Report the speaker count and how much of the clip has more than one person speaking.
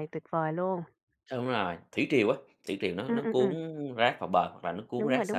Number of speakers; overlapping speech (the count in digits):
2, about 17%